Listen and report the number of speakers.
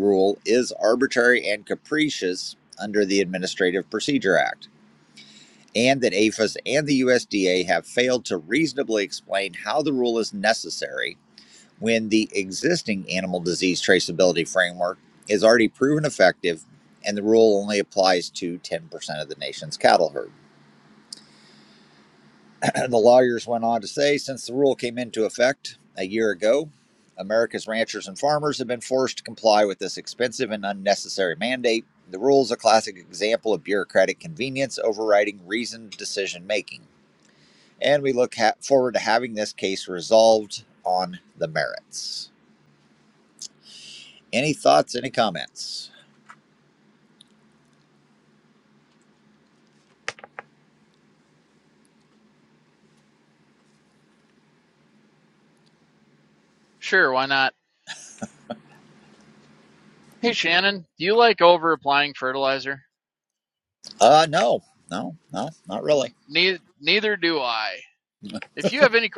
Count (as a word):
two